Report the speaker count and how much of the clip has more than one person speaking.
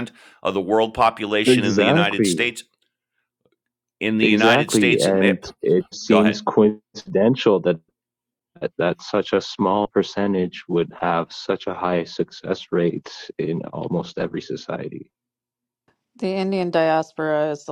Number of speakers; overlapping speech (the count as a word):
three, about 13%